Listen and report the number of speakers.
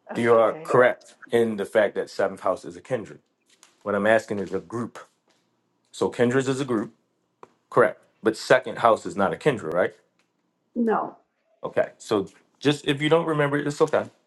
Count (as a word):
two